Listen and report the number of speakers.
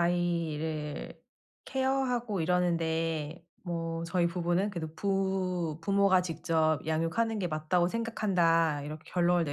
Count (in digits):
1